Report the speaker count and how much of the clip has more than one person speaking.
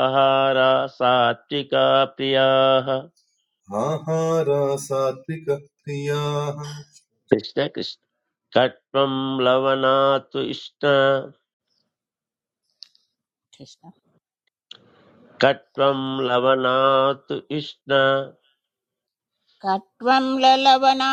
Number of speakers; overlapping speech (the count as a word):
three, no overlap